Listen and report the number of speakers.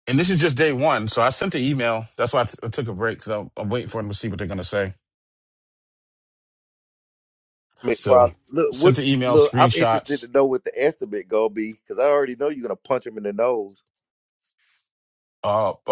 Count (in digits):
2